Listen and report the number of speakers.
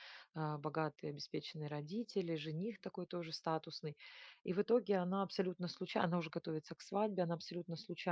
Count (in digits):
1